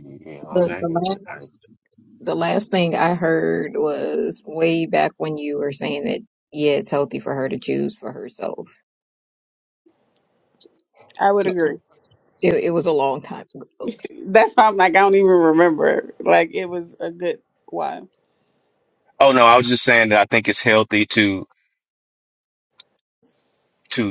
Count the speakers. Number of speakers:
3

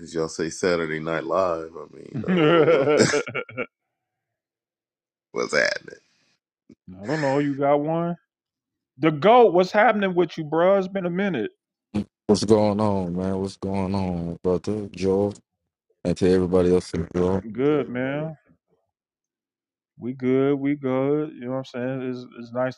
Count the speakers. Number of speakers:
3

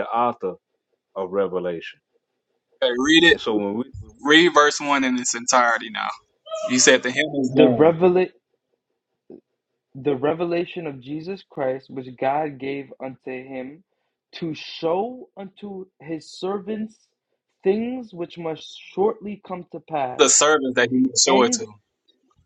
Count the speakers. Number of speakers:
3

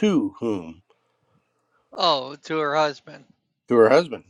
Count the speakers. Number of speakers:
2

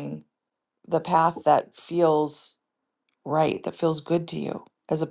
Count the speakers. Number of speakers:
1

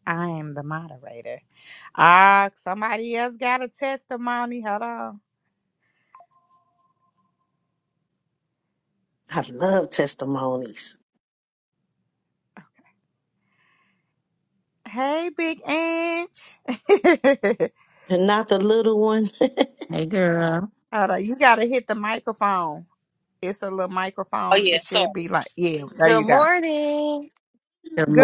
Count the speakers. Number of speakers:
4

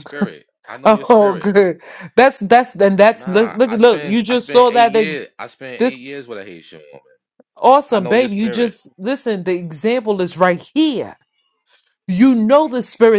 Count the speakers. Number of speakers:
2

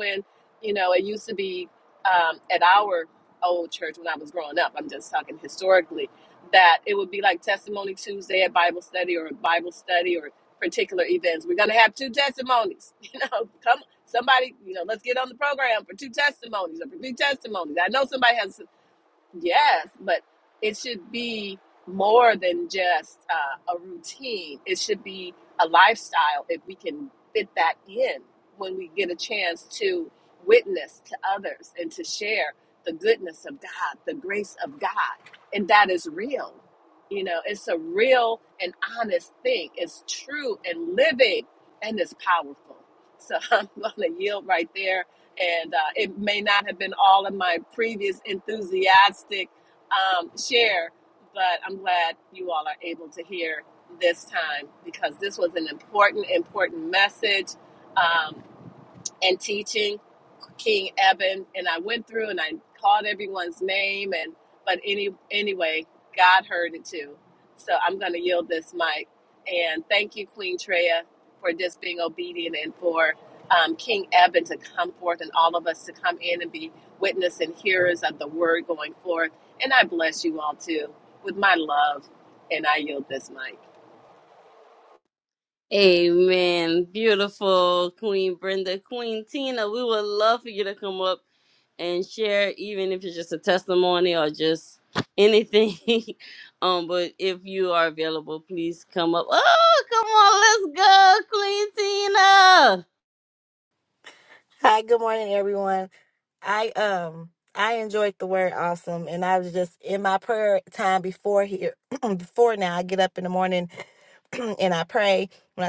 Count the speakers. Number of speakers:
3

